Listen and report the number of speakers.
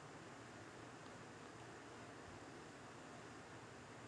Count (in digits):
0